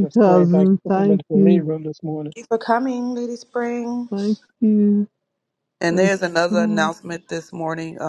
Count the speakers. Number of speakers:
4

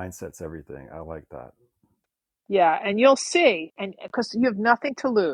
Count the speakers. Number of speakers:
2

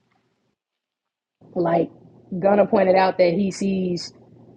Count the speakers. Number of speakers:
1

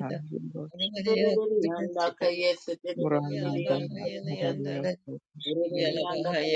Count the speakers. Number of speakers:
3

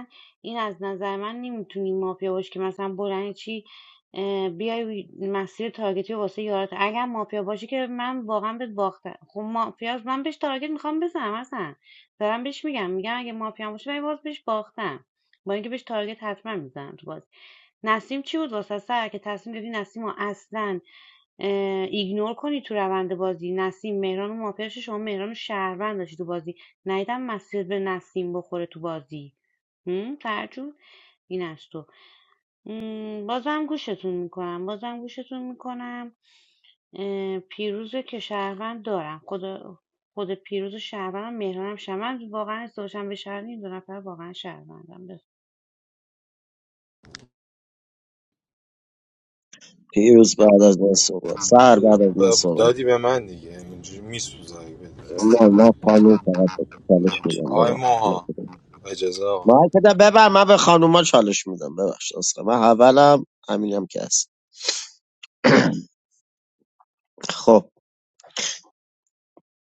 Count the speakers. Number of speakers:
3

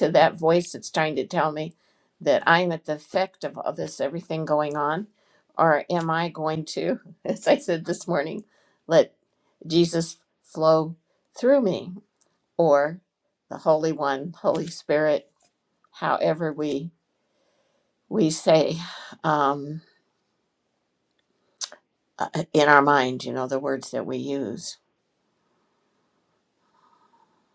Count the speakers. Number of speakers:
1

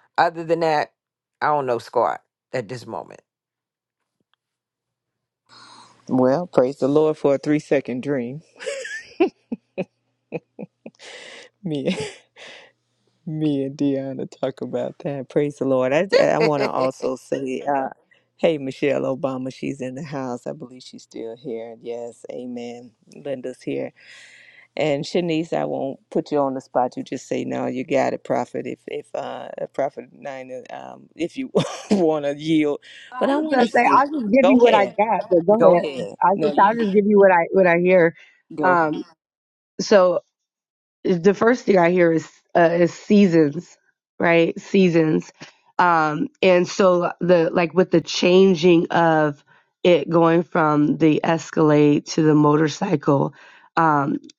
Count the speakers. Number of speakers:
3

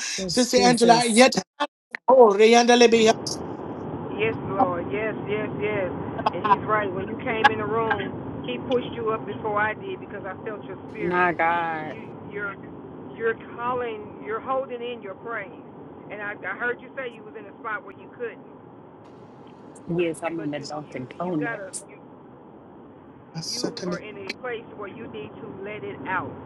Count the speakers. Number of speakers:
3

